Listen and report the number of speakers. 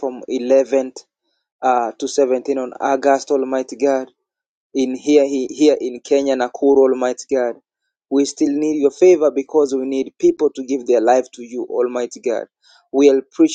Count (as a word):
one